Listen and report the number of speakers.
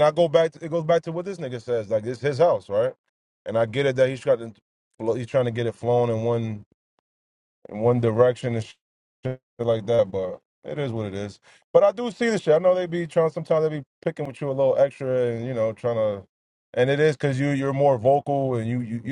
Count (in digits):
1